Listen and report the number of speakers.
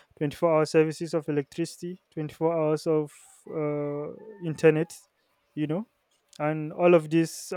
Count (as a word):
one